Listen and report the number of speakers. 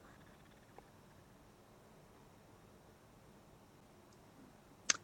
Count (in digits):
0